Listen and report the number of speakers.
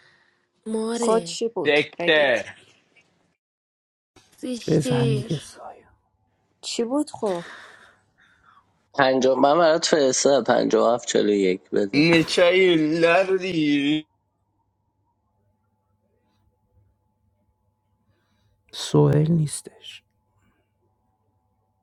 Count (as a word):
five